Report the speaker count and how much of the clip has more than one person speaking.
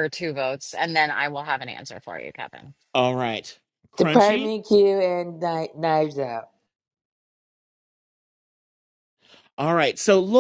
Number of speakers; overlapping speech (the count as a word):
three, about 5%